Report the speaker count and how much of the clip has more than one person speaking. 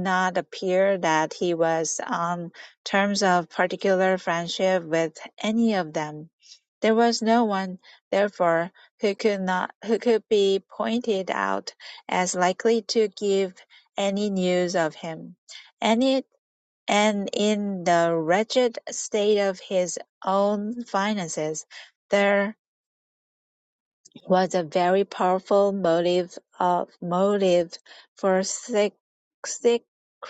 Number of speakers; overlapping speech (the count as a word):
one, no overlap